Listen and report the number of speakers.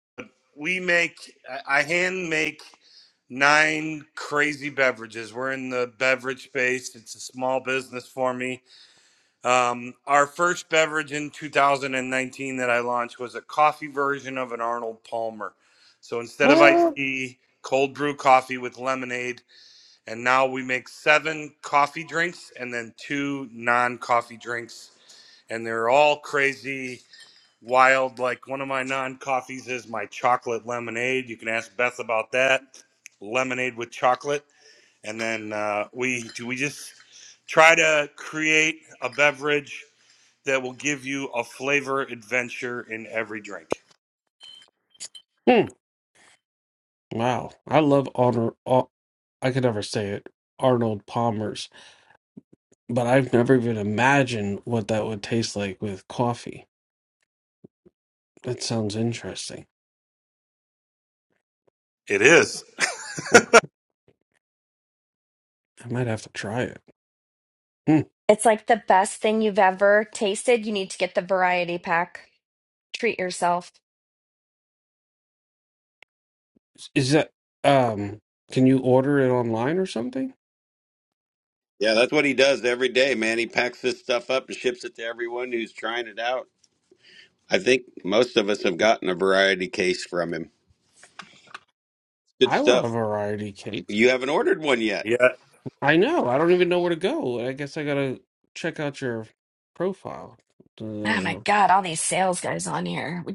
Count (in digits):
4